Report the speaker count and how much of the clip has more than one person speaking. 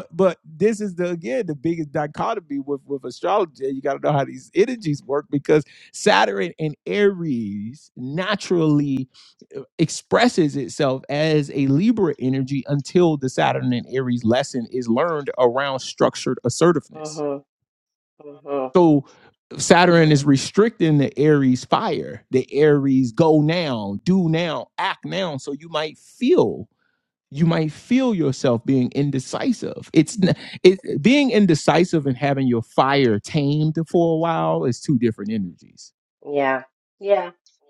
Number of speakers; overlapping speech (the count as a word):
two, no overlap